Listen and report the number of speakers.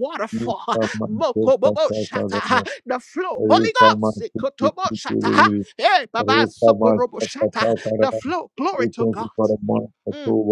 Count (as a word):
two